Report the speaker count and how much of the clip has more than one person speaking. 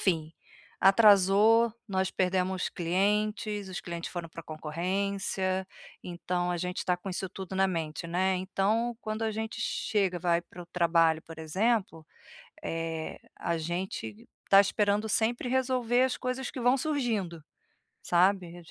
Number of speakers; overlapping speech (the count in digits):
1, no overlap